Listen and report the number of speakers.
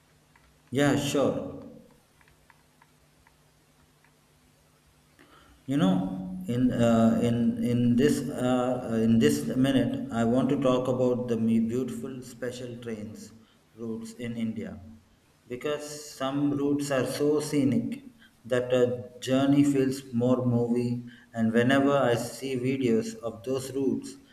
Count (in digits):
1